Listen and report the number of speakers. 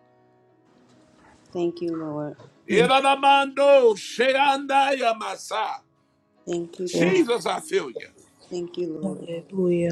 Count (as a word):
three